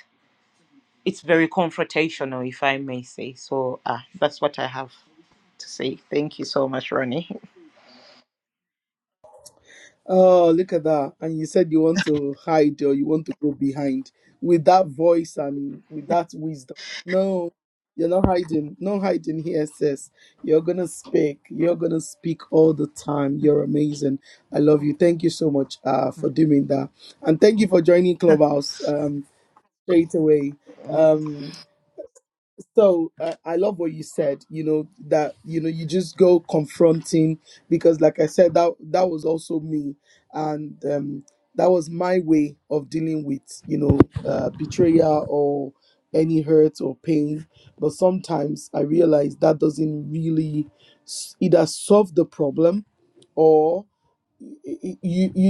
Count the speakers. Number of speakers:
two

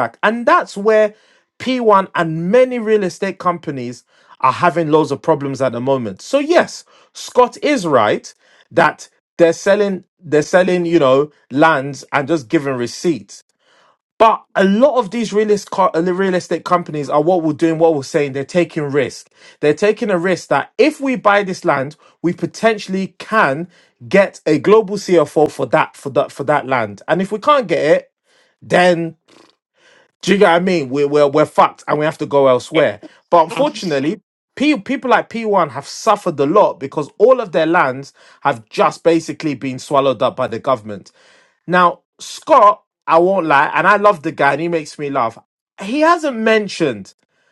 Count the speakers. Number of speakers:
one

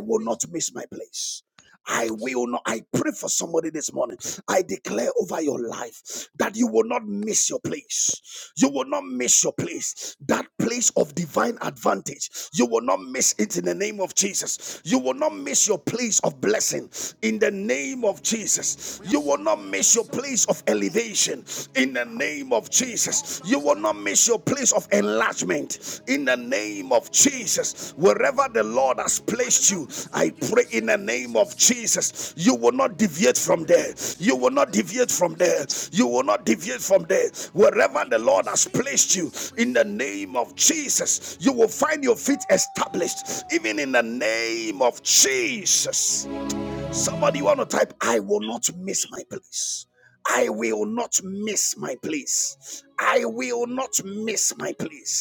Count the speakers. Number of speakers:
one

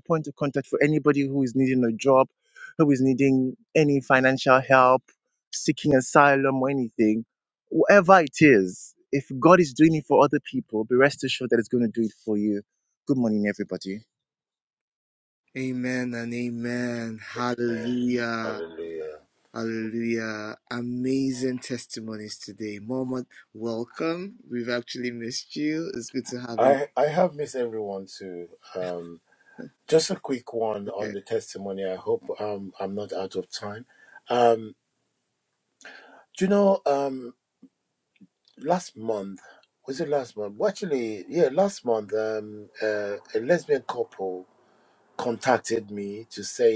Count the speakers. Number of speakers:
three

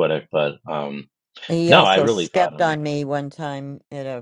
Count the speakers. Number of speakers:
two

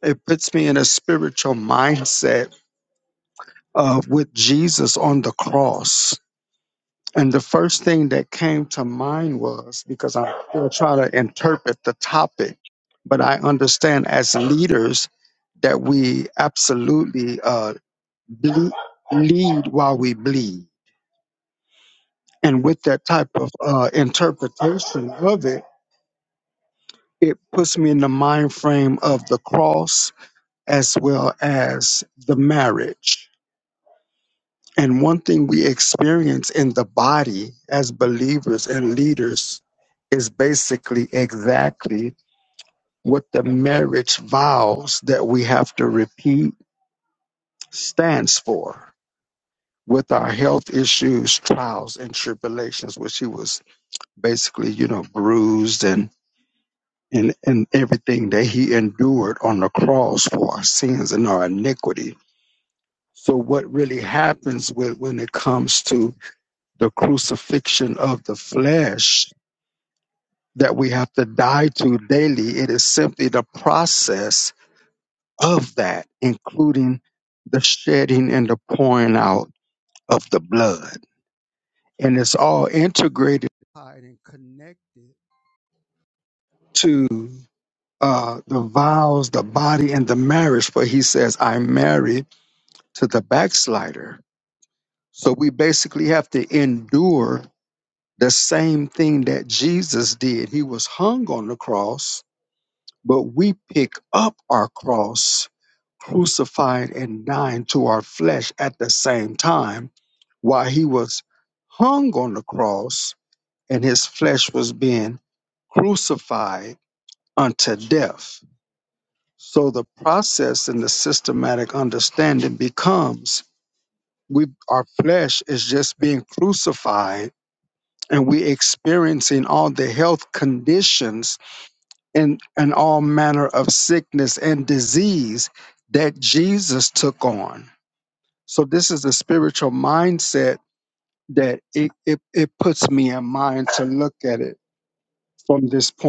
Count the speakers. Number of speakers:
one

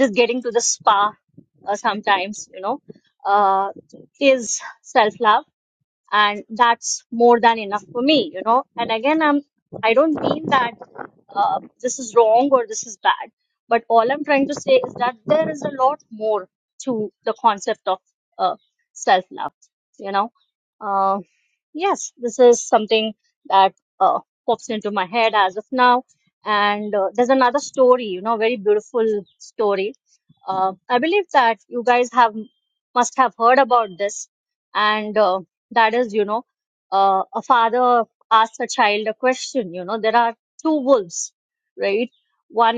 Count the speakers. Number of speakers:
one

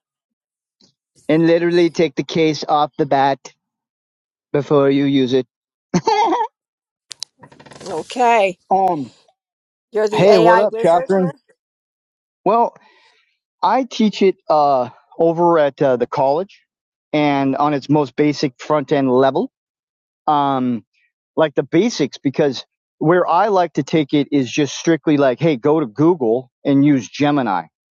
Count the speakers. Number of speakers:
two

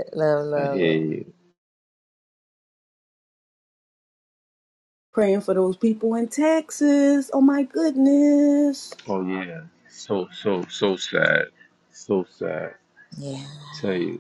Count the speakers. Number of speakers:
three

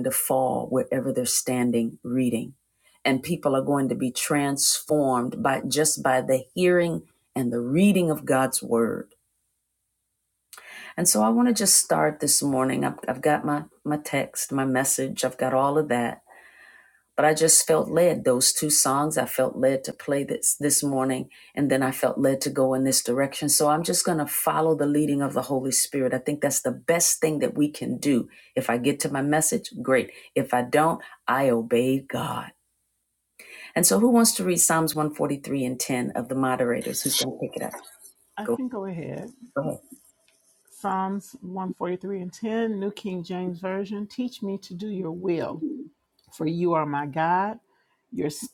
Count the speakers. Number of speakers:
two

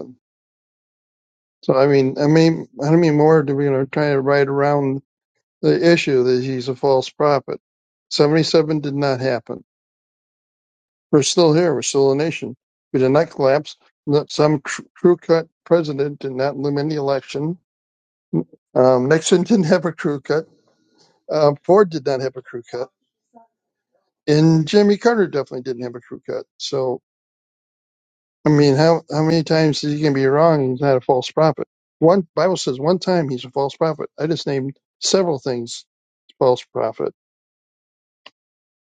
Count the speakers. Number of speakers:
one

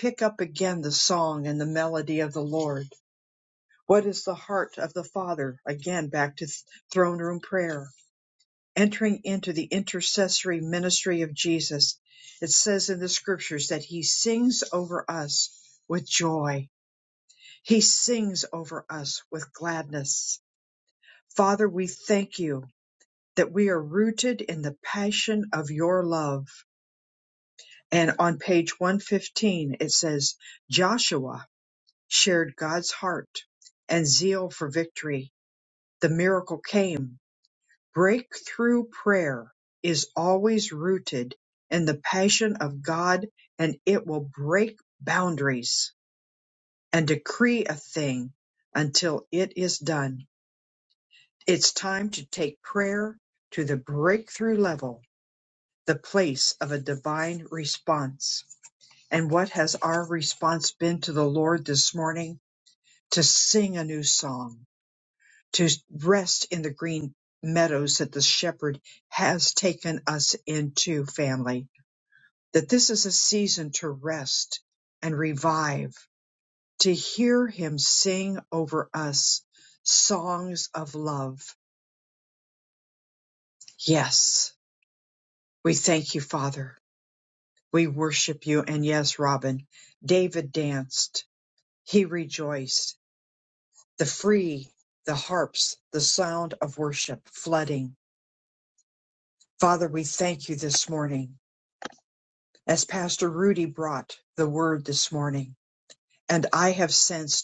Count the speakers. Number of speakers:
one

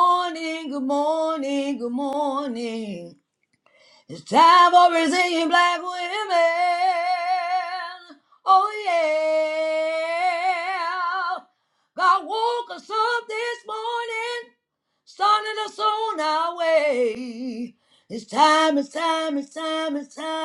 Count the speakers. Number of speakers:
one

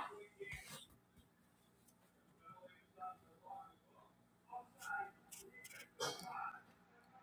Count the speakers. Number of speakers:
zero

